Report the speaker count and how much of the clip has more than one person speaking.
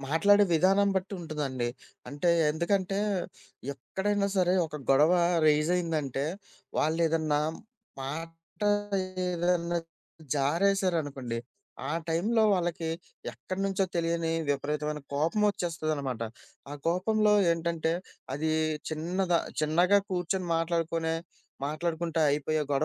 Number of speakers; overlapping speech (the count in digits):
1, no overlap